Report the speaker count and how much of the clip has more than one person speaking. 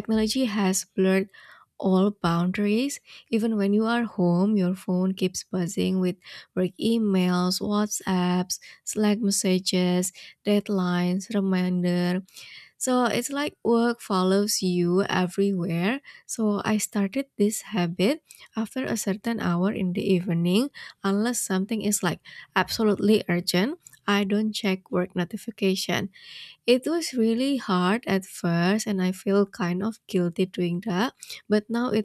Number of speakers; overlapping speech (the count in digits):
1, no overlap